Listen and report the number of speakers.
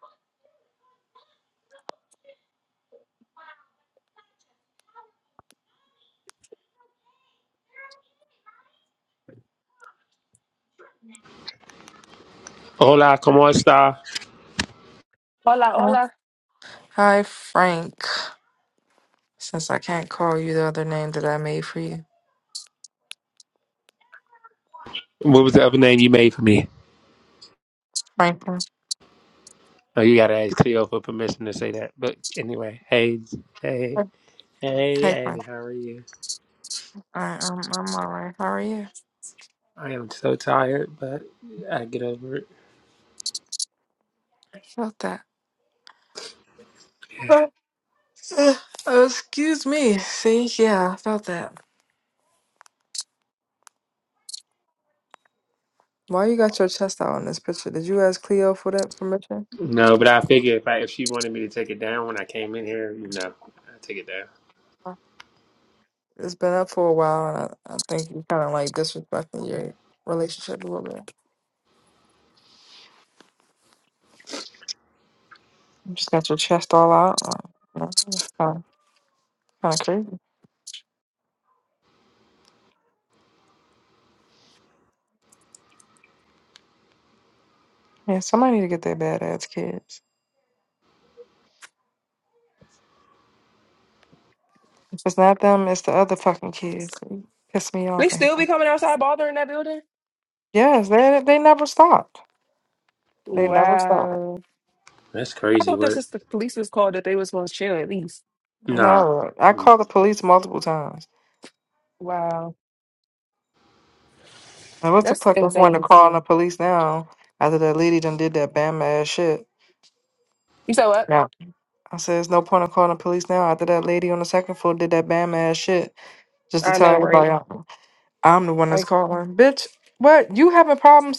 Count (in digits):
3